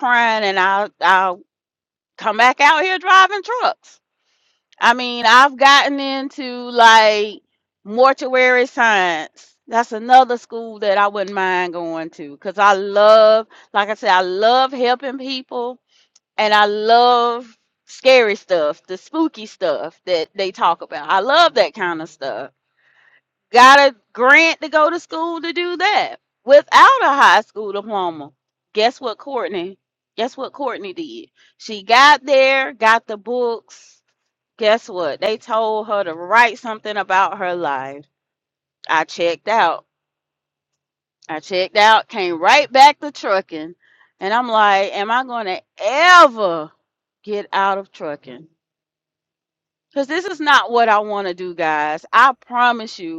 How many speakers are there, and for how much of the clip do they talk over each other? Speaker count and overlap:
1, no overlap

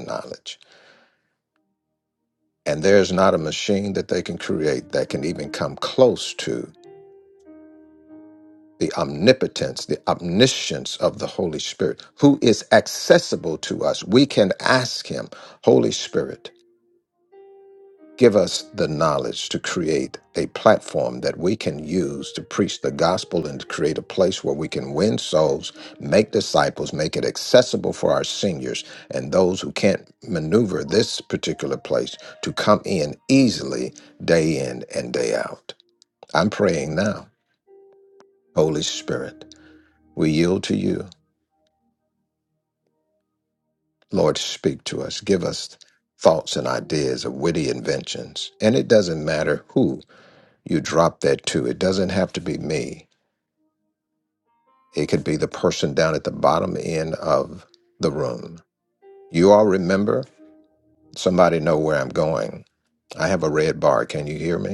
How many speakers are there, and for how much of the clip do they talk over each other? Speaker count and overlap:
1, no overlap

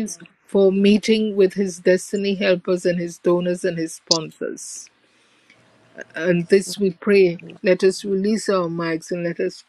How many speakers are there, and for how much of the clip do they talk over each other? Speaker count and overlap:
1, no overlap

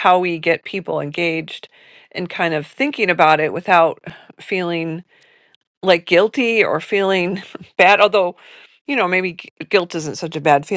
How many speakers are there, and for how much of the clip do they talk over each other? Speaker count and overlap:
1, no overlap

